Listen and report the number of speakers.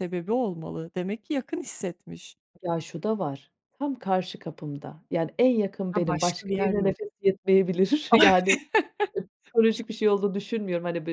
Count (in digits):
2